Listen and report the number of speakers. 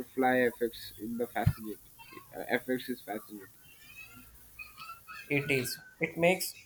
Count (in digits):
2